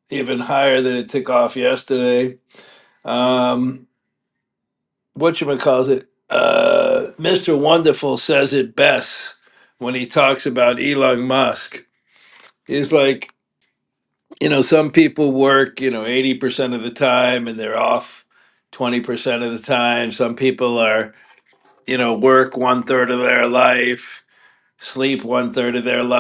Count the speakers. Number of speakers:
1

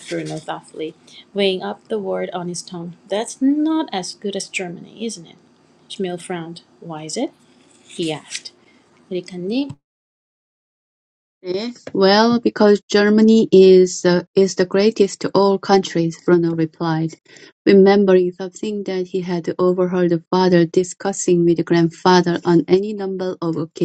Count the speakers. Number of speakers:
2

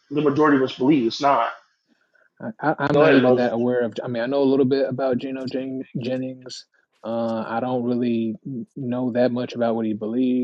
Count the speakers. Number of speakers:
2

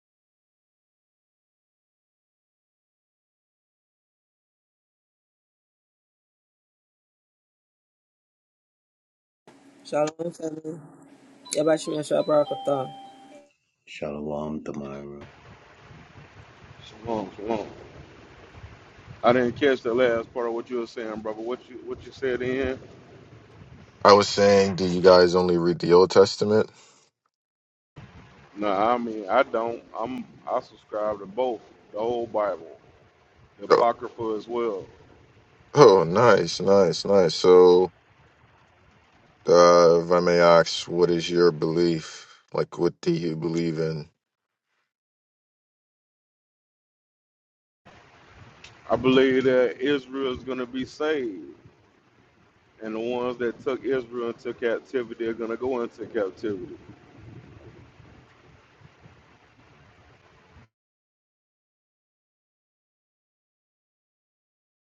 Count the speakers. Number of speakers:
4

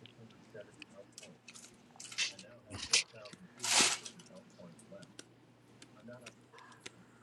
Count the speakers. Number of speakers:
0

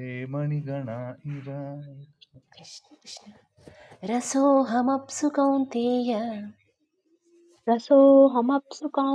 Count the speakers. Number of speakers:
3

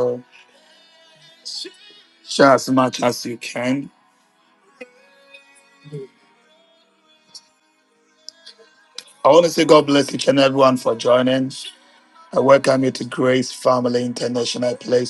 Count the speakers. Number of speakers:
1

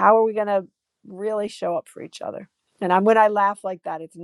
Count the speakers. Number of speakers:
1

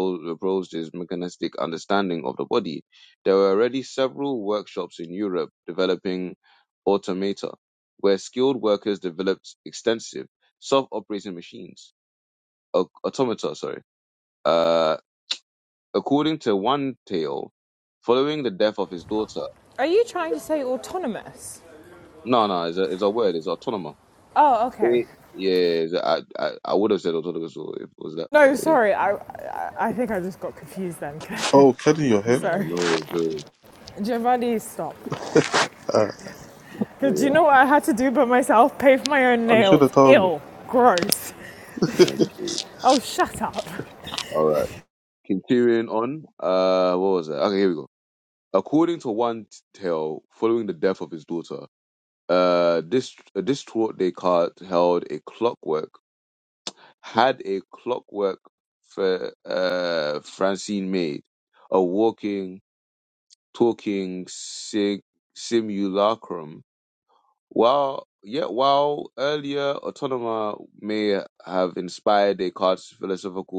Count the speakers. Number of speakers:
3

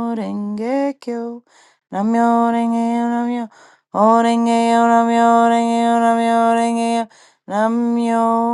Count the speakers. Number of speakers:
1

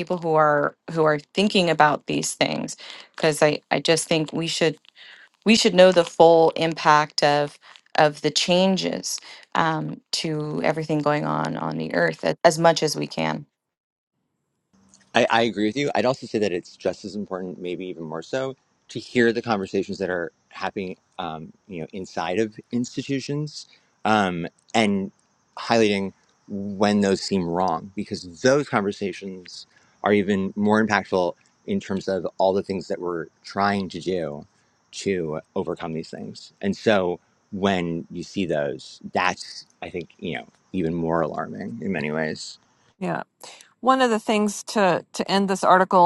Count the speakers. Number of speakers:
3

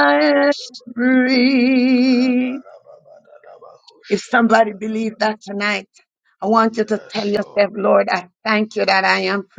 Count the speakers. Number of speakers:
2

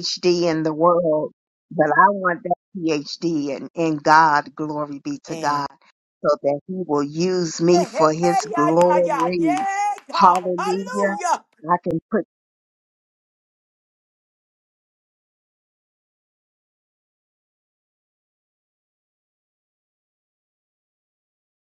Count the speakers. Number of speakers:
2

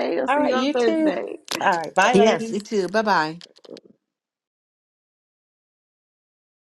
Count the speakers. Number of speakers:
3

